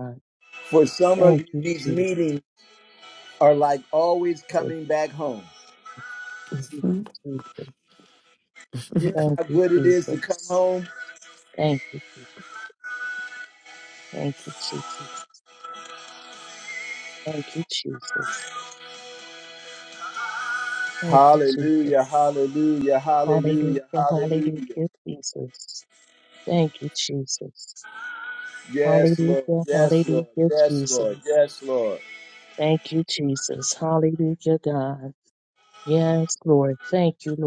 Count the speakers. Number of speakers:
2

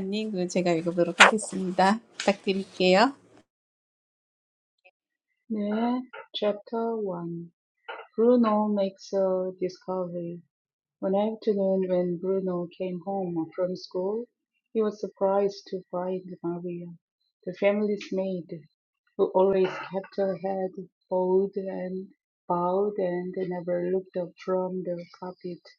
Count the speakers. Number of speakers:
2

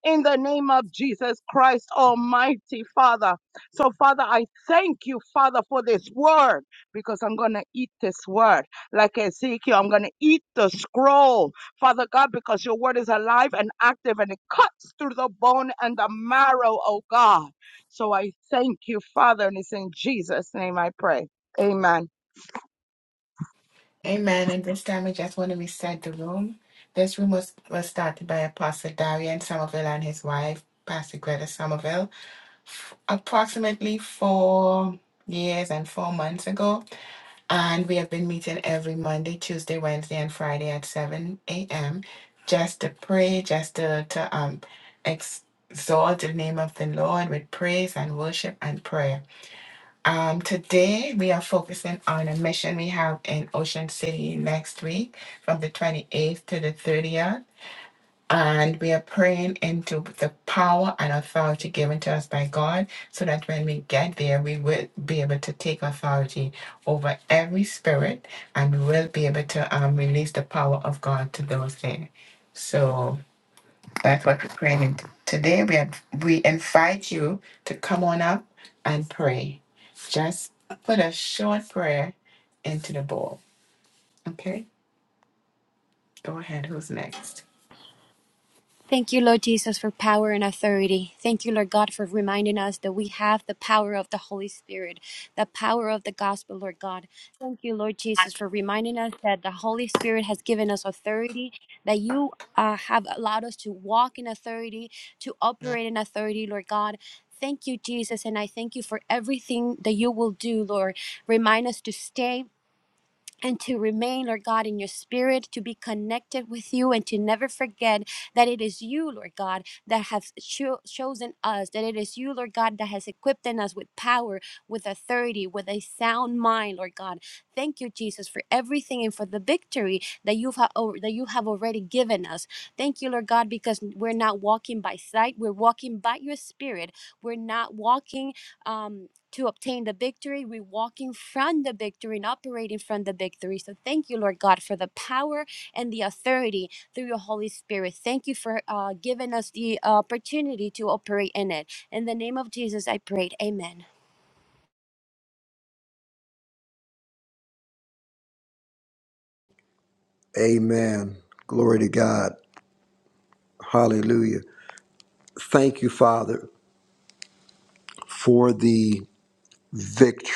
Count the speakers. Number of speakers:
4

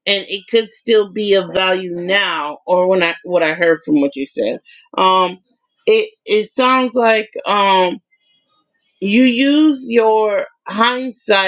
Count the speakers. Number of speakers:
1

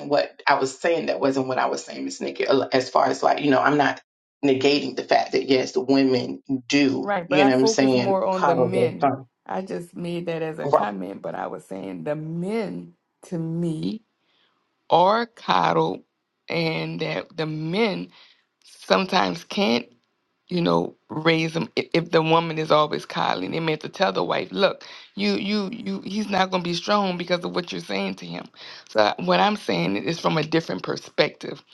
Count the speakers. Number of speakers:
2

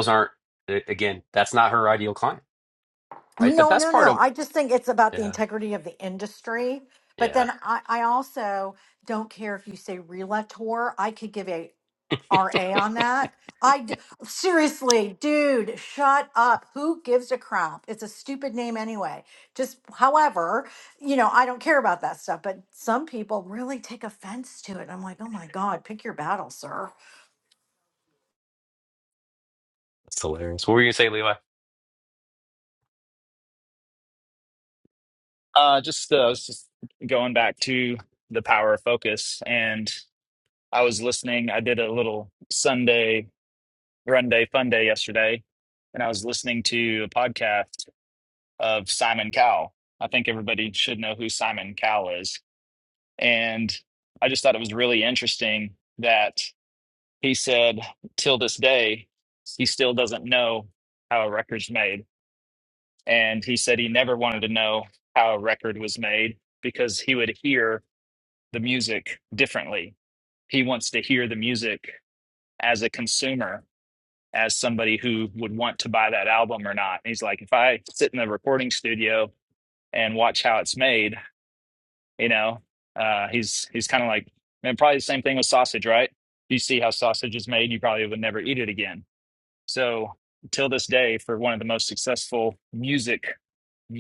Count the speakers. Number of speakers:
3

